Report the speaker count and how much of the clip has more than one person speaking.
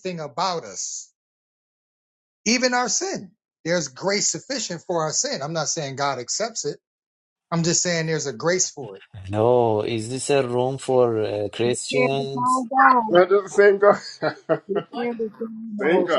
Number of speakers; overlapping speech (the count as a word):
four, about 6%